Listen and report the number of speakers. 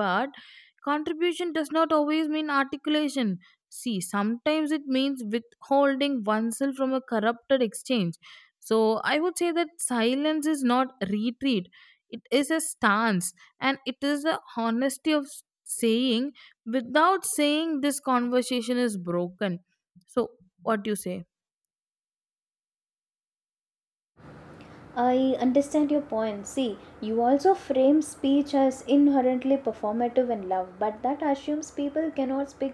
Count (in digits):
2